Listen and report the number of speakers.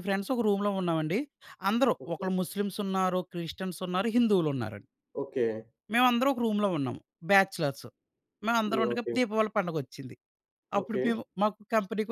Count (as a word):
two